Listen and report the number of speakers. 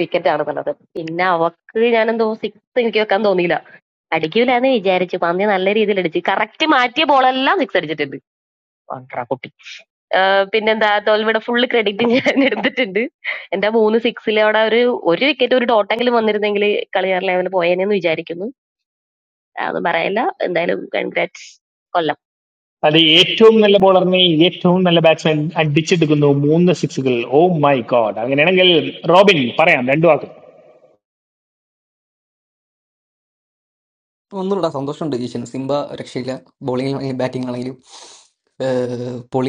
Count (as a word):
three